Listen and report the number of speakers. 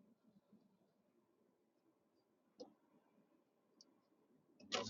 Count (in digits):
0